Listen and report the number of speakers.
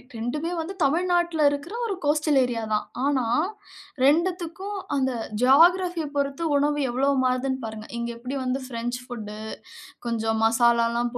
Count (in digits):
1